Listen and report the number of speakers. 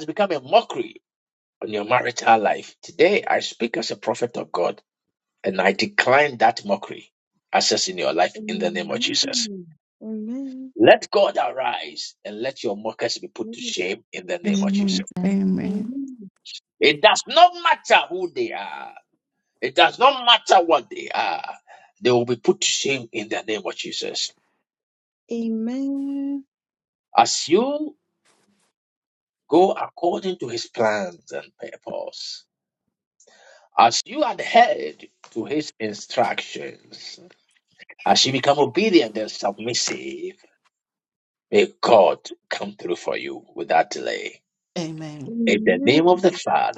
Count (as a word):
three